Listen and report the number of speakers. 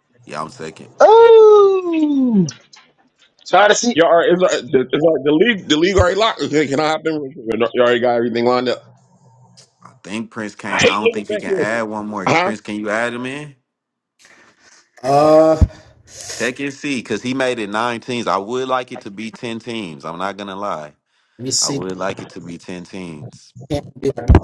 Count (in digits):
4